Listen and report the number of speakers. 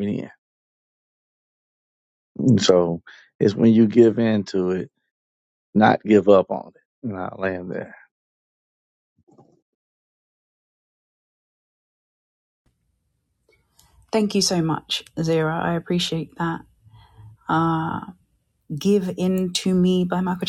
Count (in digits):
2